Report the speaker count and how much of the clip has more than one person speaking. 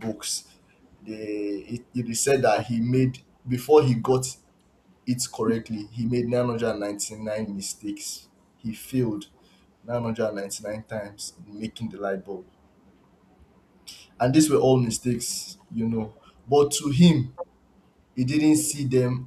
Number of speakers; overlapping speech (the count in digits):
1, no overlap